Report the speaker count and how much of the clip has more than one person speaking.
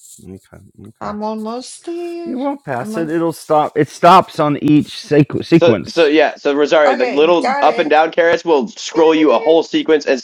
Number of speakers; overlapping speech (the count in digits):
3, about 27%